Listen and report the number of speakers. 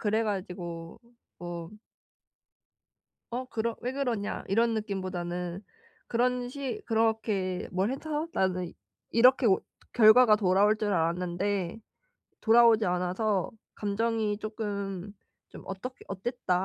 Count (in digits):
1